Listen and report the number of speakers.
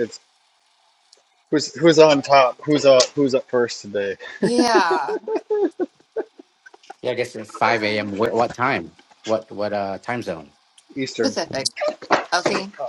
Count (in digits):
3